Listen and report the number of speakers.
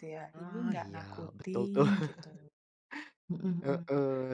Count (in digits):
2